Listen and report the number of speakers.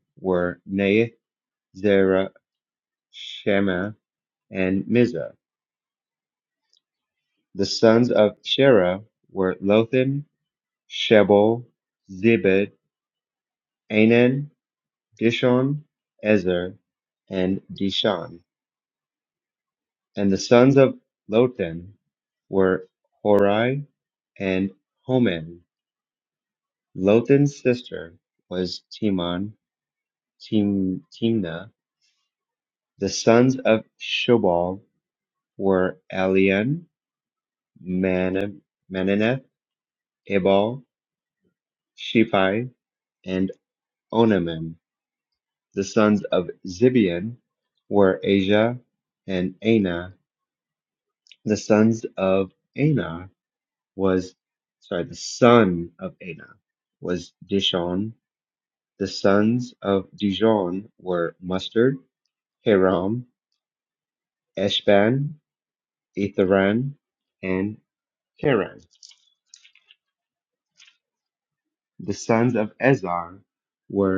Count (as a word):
one